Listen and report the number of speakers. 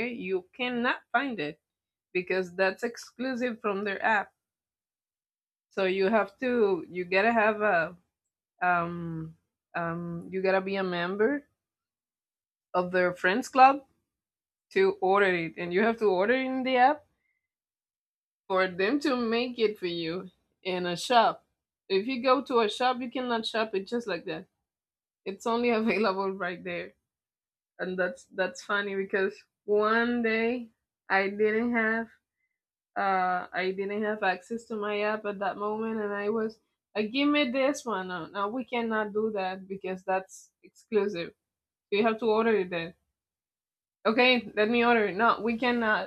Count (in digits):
1